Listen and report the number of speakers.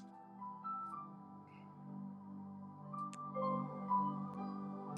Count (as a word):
zero